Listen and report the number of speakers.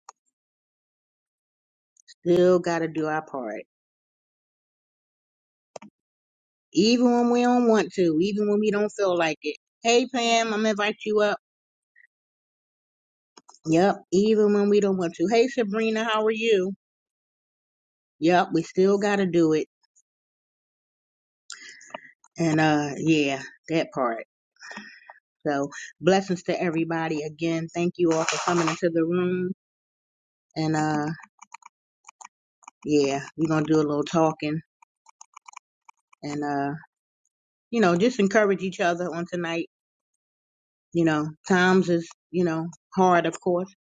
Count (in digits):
1